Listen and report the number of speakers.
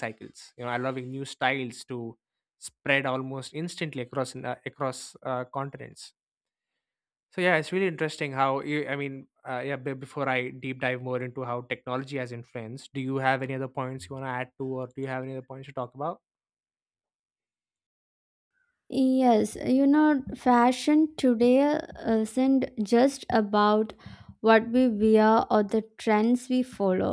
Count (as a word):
two